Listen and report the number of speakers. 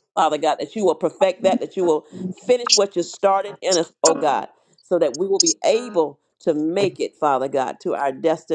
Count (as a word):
one